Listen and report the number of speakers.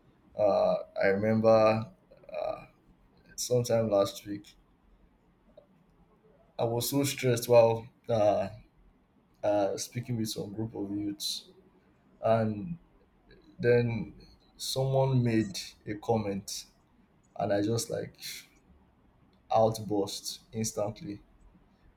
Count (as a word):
one